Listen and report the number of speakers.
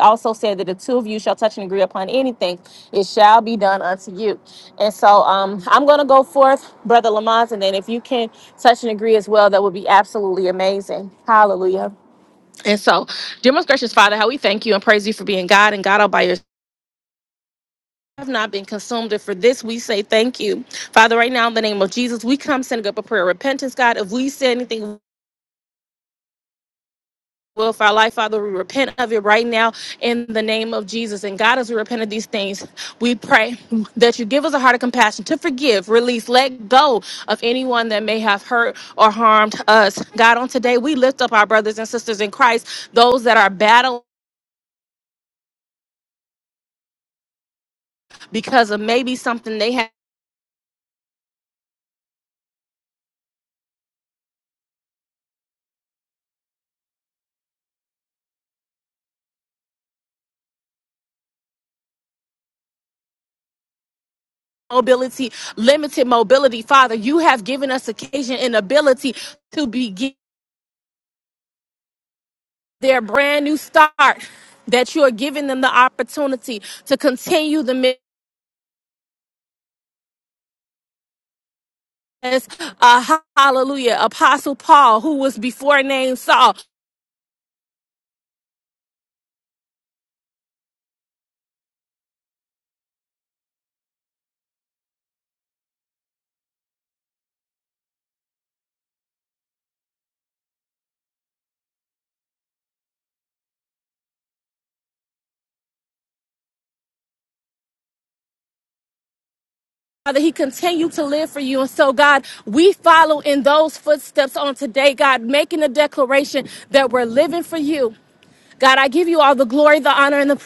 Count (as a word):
one